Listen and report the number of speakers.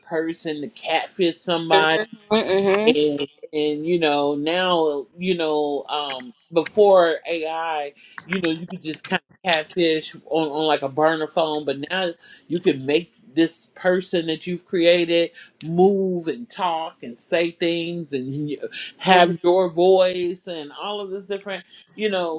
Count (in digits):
2